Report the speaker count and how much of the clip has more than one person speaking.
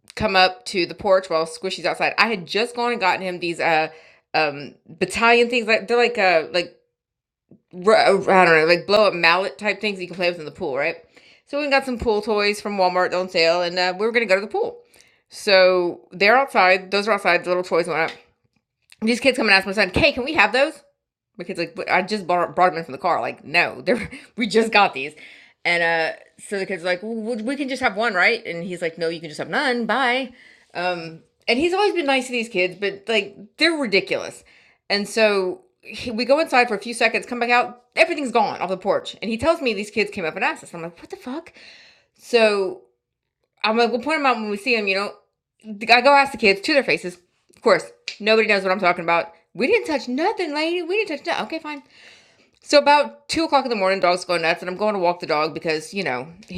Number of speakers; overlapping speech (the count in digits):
1, no overlap